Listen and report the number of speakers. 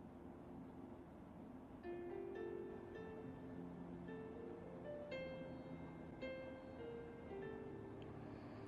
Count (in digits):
0